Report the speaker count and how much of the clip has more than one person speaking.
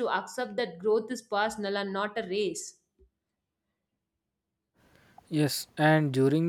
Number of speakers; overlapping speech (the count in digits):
2, no overlap